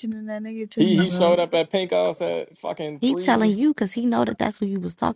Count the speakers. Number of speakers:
three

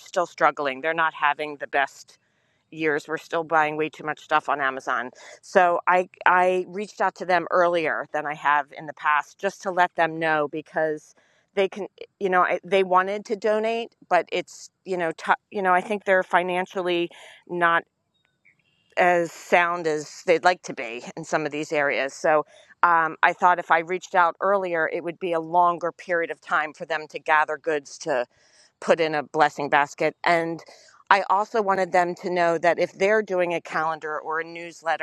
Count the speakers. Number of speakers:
one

